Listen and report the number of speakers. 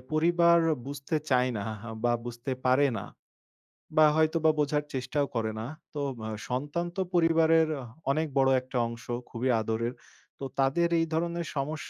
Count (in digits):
1